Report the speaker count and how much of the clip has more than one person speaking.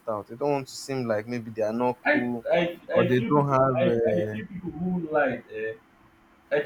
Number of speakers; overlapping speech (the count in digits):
2, about 27%